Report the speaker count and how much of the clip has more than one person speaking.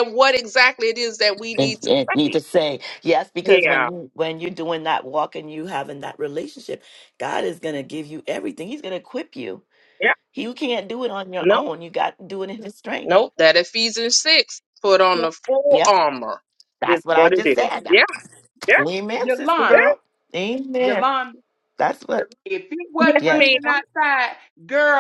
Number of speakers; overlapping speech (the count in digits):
3, about 17%